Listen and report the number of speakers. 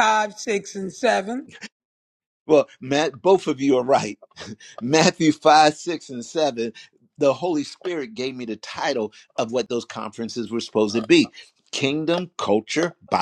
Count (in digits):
2